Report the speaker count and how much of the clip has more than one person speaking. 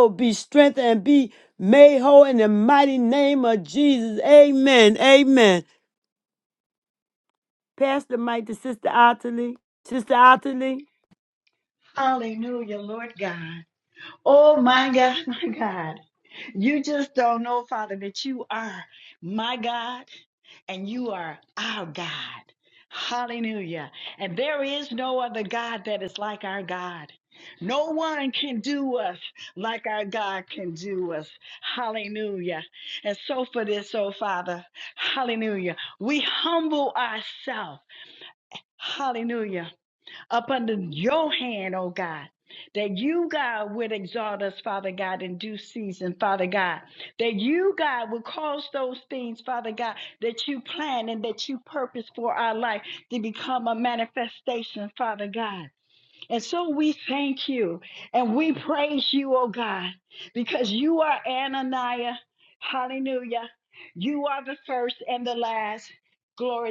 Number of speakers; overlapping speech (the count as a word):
two, no overlap